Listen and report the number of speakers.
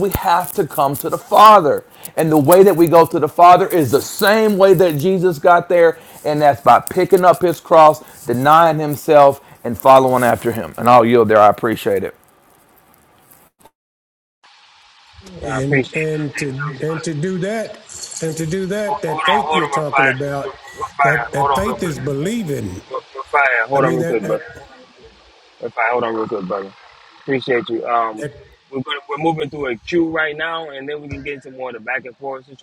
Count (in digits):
3